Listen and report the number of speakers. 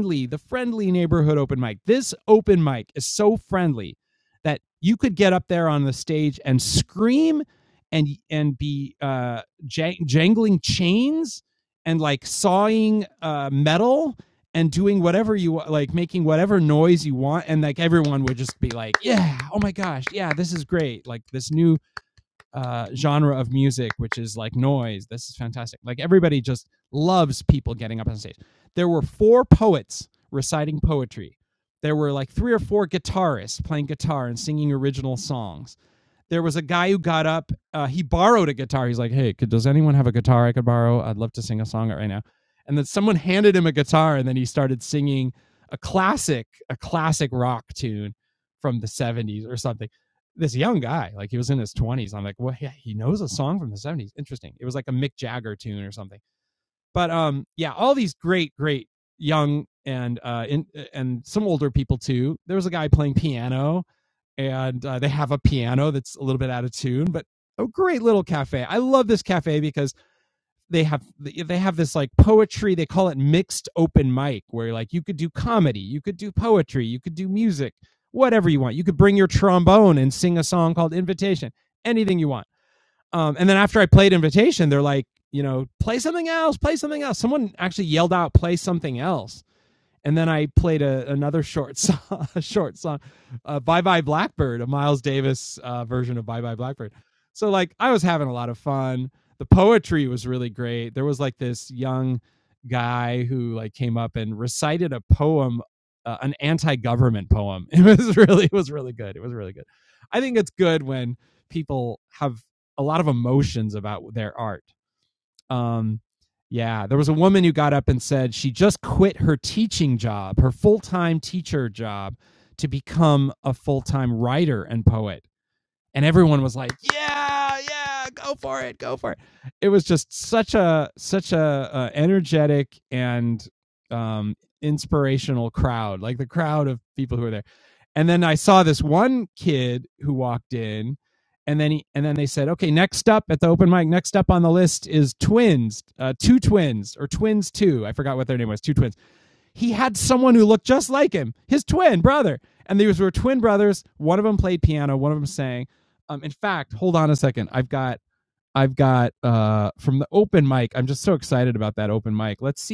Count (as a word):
one